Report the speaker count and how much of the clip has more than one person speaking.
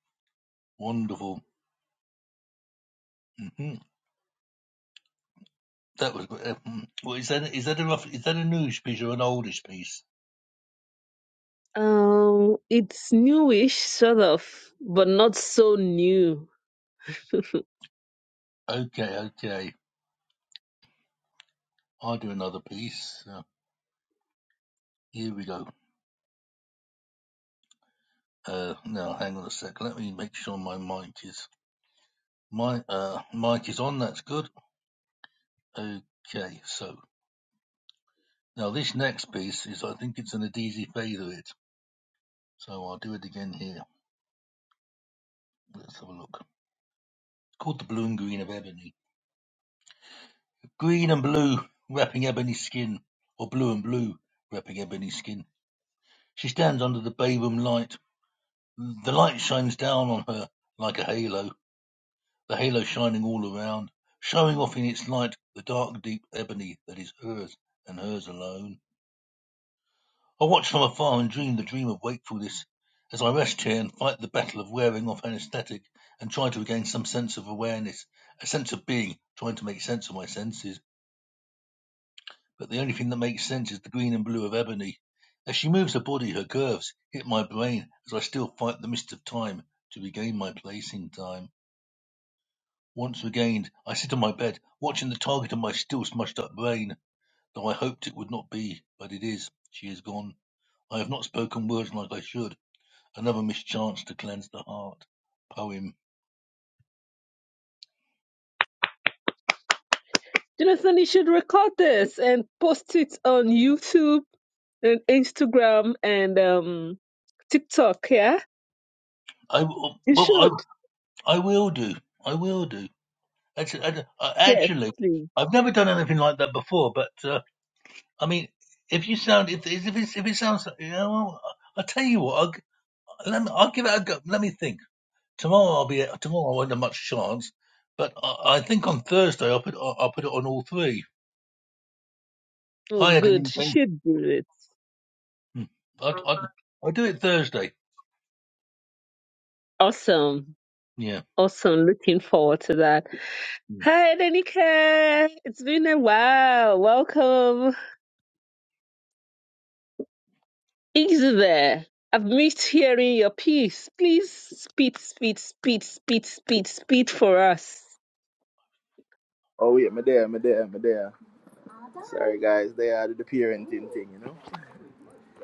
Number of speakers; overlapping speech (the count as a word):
three, about 1%